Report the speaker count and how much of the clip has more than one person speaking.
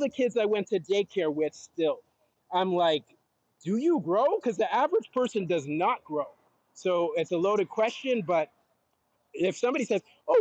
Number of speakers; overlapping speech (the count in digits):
1, no overlap